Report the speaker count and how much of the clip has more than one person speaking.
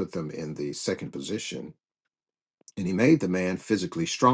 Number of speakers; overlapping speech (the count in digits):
1, no overlap